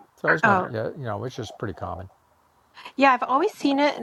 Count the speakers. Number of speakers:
2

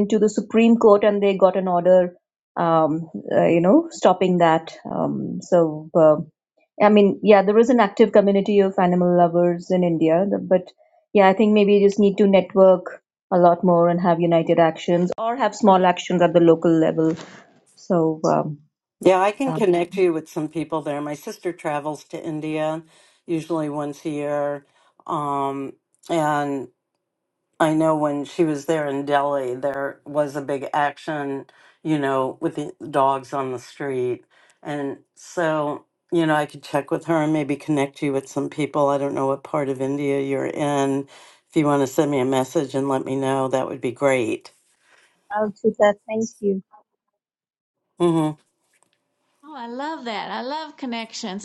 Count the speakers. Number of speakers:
3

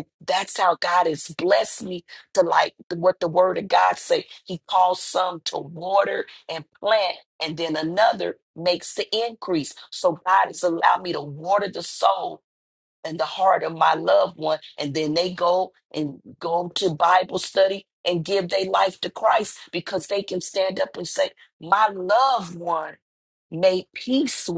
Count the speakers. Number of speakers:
1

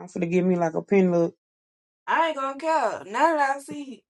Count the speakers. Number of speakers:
2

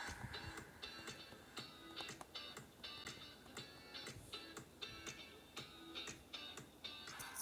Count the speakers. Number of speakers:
0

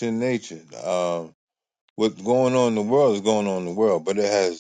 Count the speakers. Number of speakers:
1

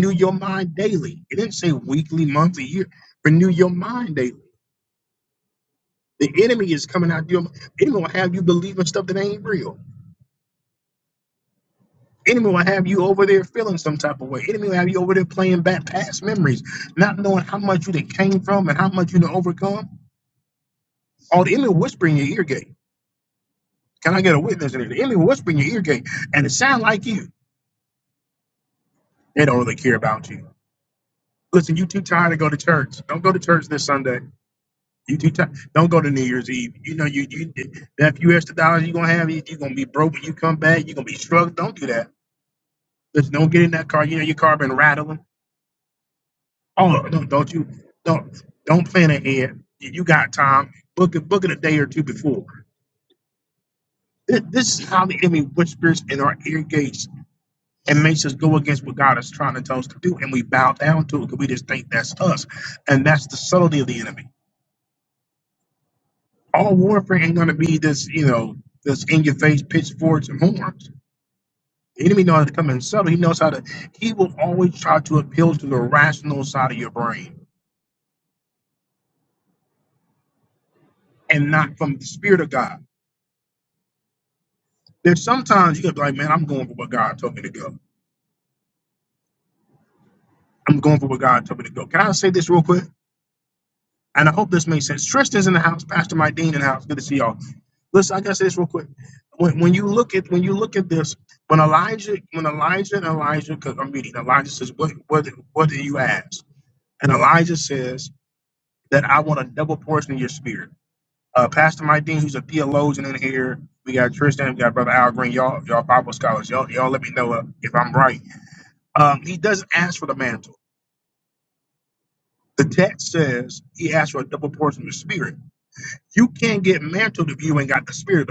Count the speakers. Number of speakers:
1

